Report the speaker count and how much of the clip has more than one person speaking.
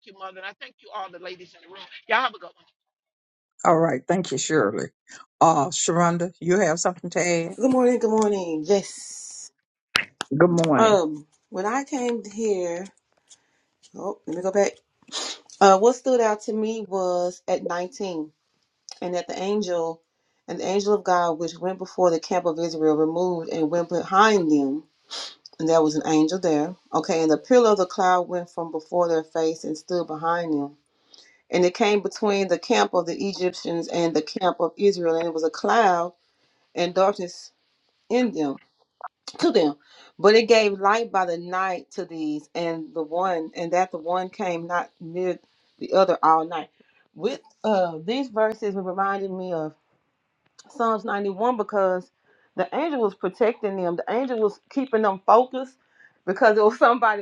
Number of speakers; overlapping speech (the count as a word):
three, under 1%